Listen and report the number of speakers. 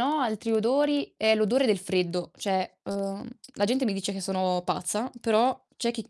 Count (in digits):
1